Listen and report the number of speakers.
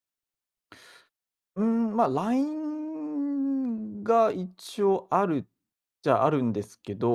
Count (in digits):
1